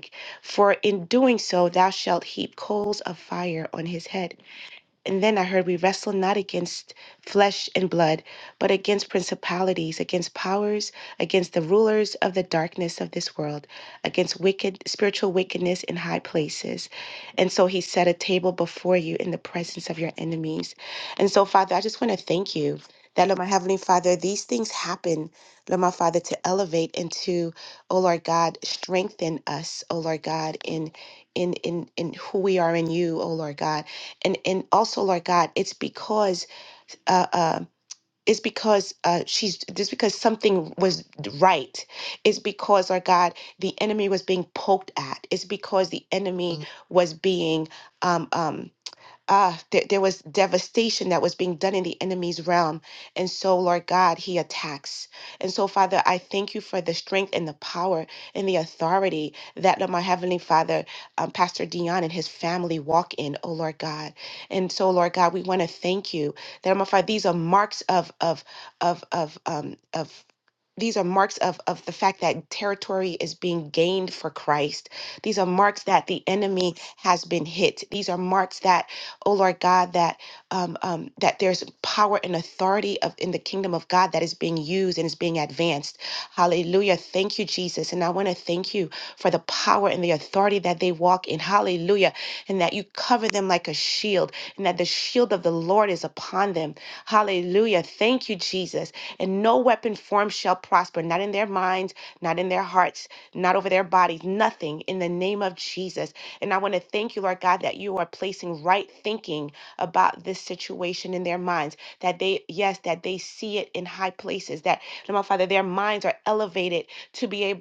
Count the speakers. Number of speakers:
1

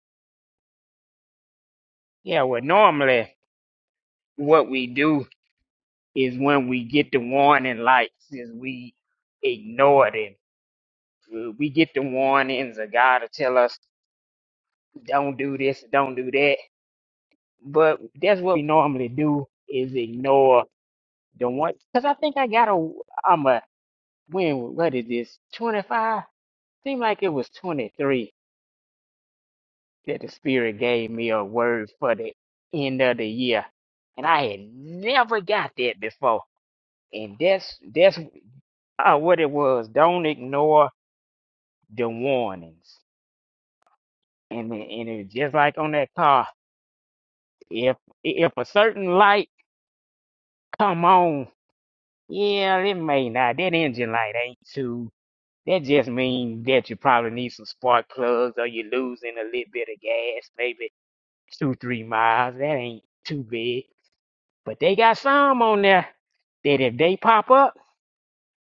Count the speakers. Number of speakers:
1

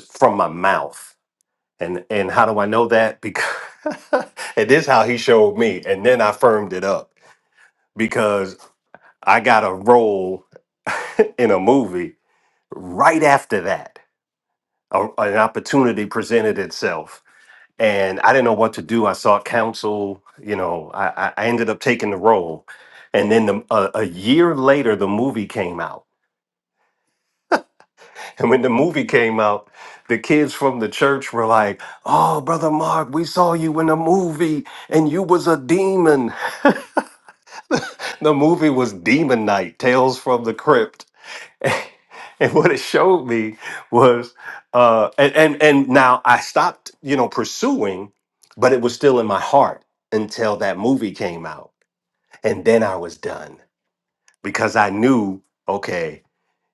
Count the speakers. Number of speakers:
1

